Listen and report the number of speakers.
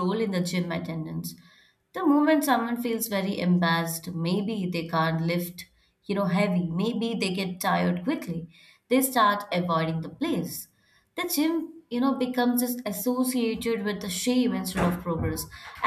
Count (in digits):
1